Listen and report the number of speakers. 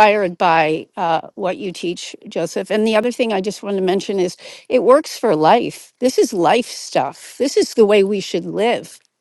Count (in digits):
1